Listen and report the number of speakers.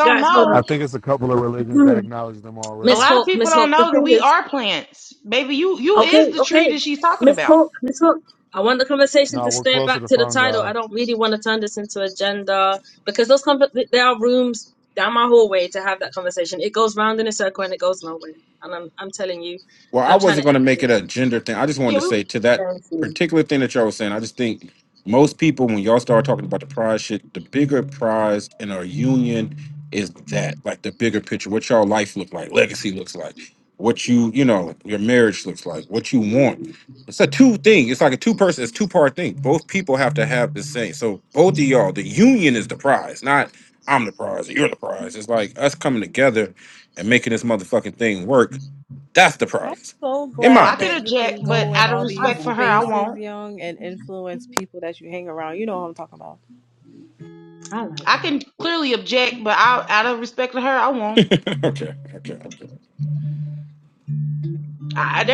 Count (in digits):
5